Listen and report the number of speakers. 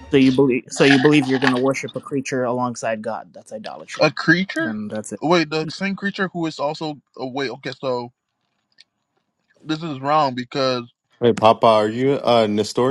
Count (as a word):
three